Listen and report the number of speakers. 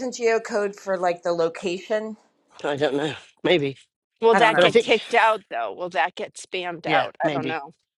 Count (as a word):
three